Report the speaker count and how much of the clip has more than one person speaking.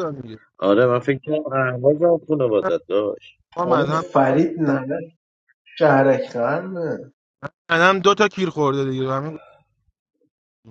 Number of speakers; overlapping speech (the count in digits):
3, about 4%